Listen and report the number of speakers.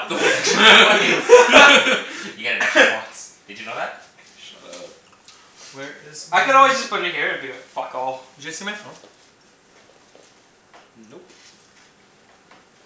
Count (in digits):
4